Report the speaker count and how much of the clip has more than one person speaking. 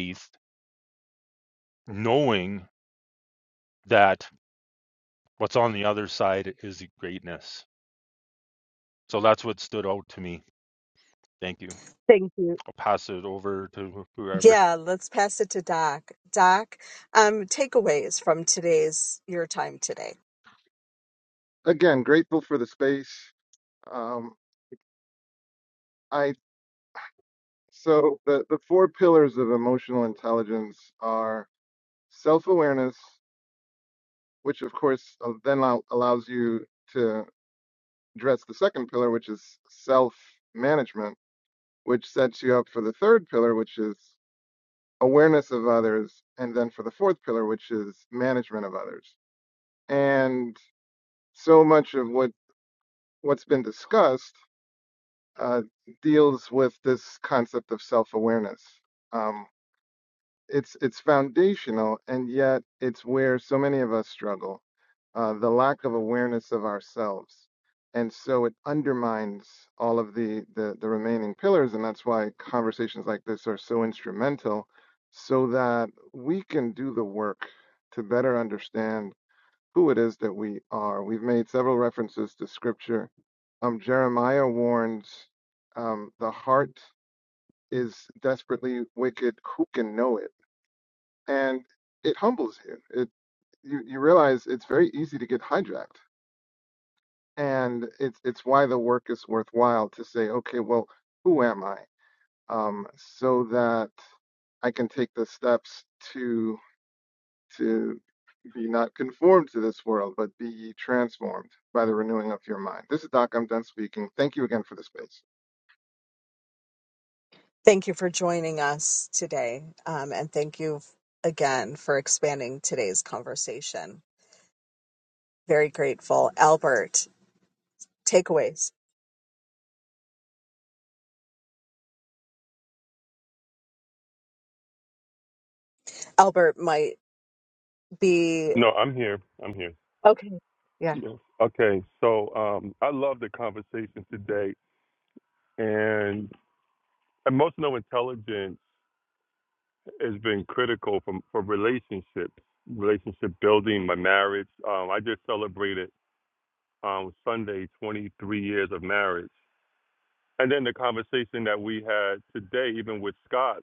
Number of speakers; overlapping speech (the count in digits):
4, under 1%